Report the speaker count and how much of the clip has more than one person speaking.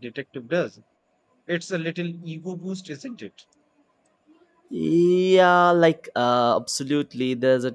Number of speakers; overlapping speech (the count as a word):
two, no overlap